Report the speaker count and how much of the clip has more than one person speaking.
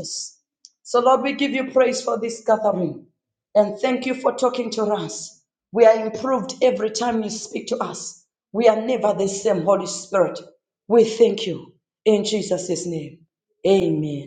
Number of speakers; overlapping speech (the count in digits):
1, no overlap